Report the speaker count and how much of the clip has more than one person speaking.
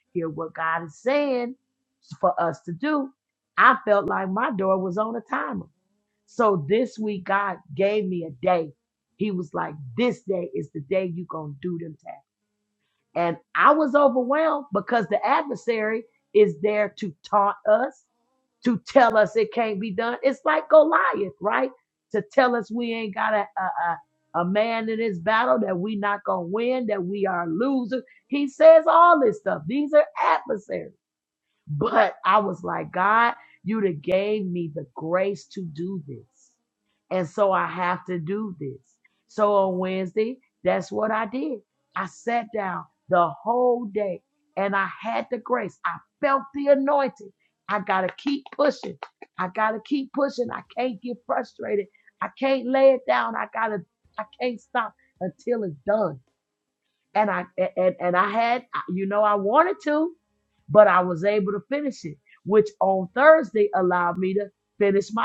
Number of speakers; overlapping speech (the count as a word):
one, no overlap